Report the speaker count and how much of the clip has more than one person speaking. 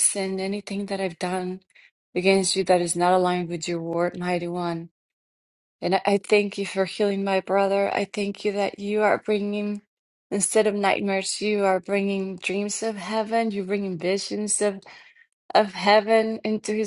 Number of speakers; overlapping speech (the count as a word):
one, no overlap